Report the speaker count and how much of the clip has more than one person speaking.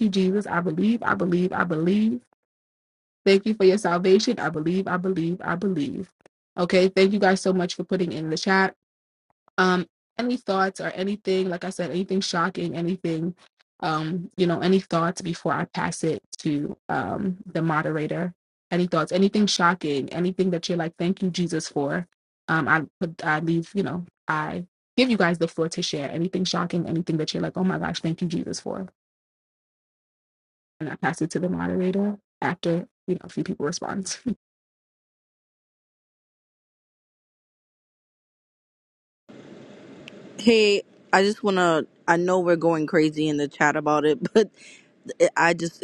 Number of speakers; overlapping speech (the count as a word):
two, no overlap